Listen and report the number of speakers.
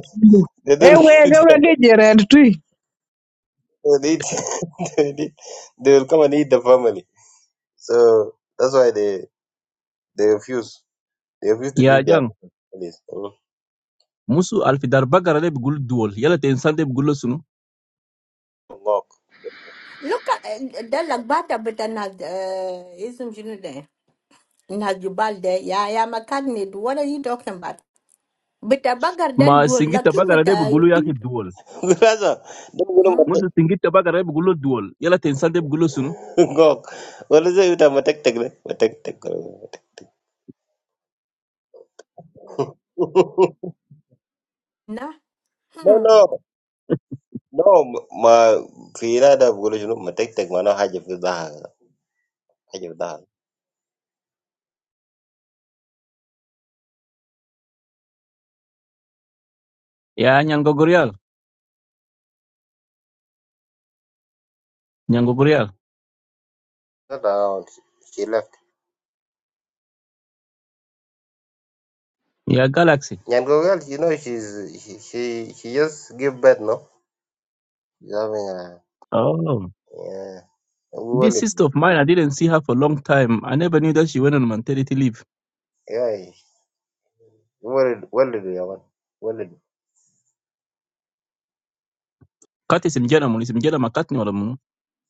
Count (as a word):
four